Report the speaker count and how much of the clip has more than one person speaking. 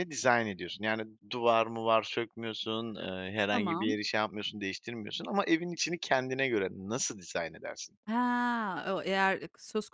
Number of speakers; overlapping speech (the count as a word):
two, about 4%